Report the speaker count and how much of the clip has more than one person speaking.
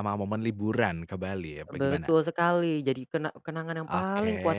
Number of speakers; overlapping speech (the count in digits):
2, about 21%